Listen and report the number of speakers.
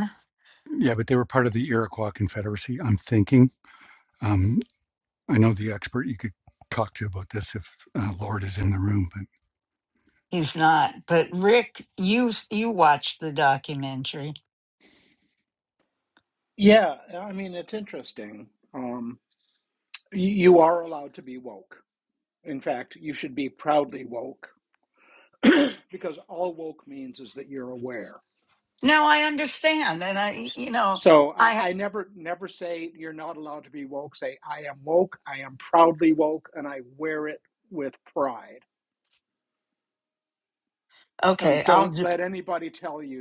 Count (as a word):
three